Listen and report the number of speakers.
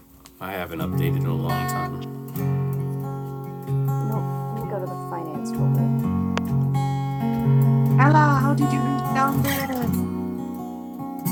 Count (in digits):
3